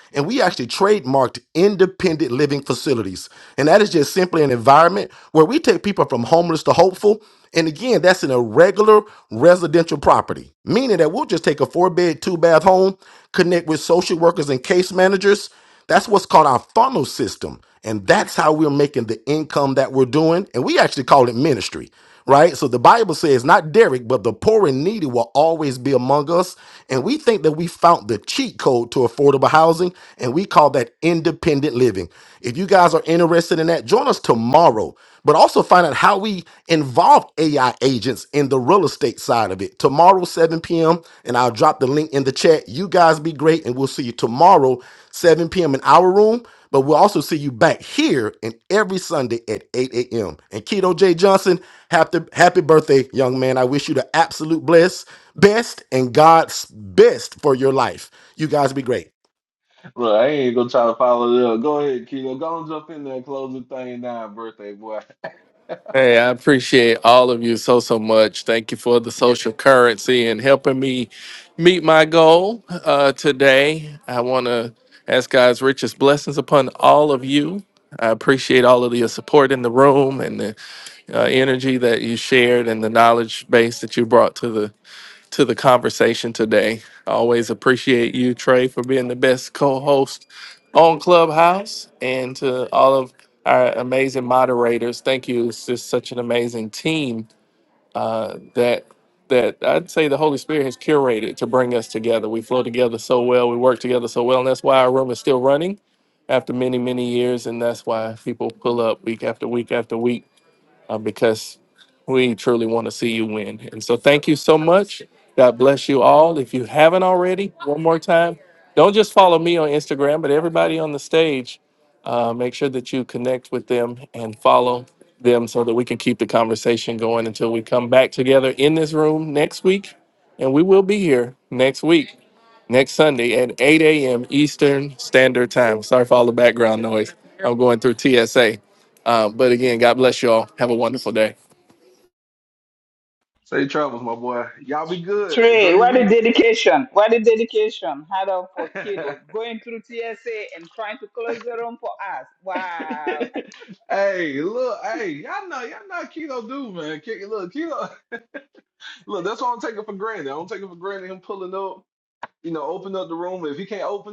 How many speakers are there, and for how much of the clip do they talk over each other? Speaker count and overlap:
4, about 1%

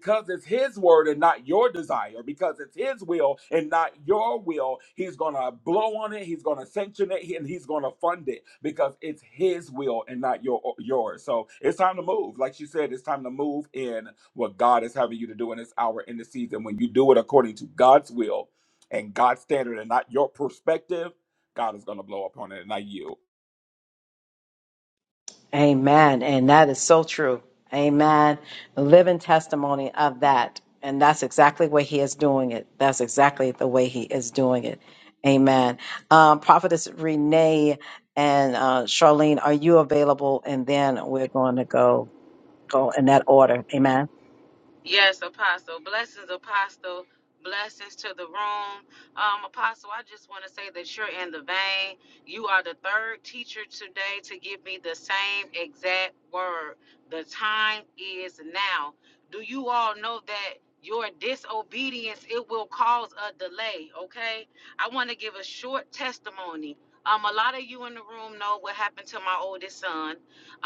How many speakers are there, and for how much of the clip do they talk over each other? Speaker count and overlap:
3, no overlap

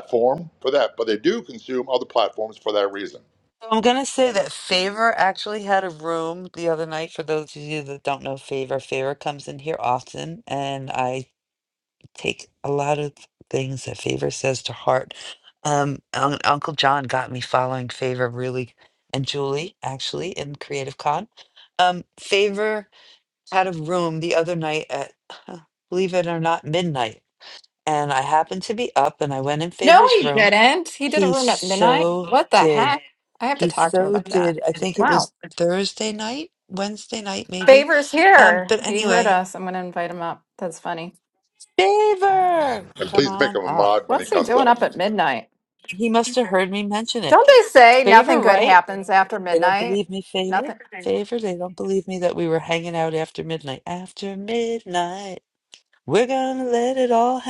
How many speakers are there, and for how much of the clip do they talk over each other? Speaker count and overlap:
3, about 14%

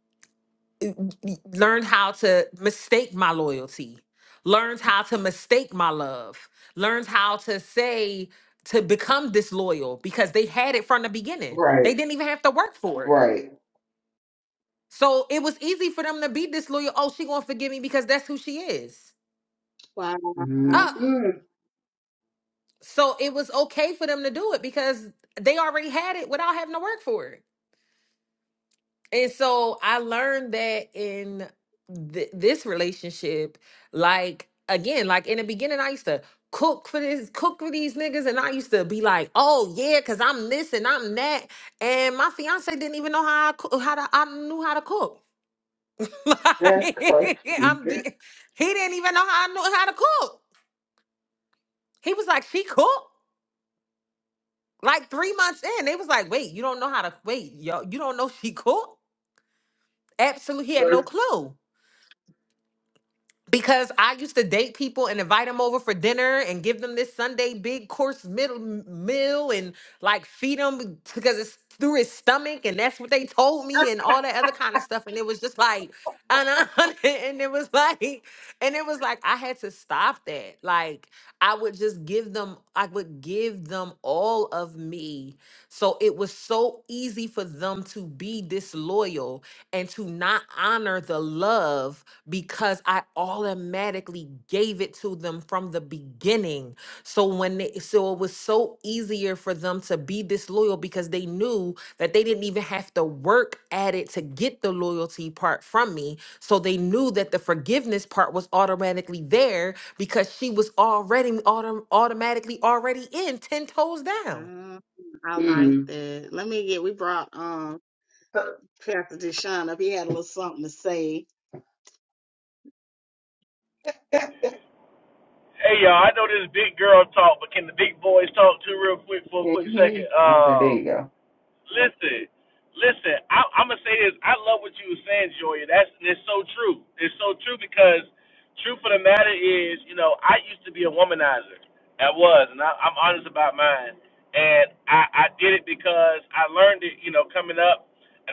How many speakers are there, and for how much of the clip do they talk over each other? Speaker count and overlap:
4, about 3%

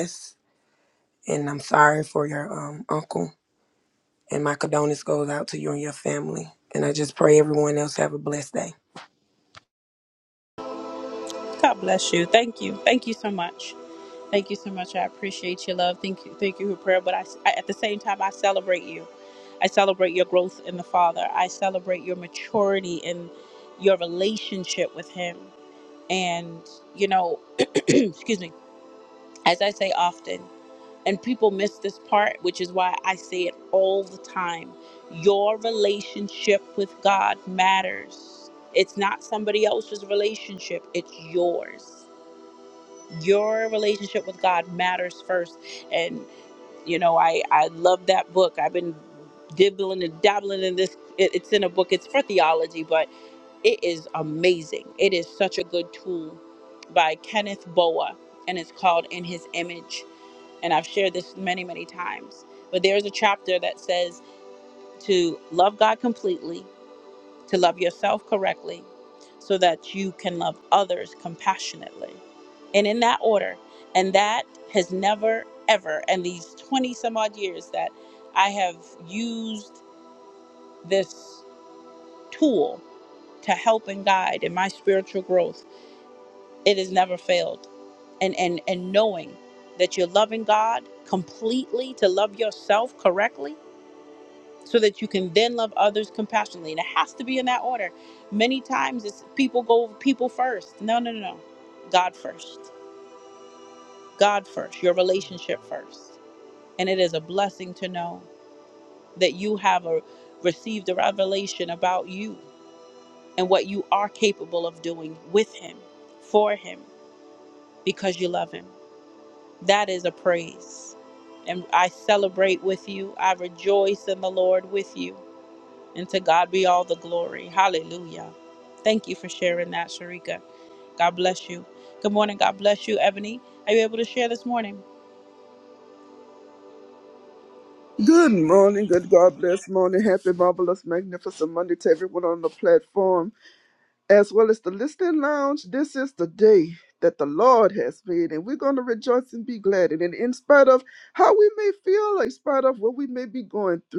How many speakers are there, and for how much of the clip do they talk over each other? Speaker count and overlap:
3, no overlap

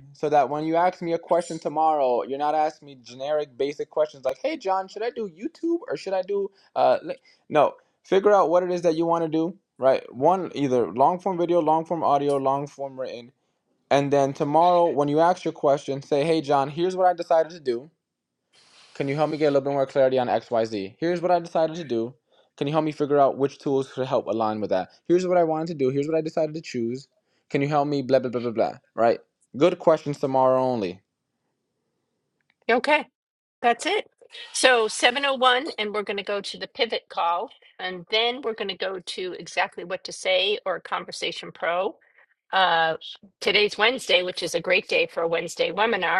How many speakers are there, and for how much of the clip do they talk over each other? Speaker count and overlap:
2, no overlap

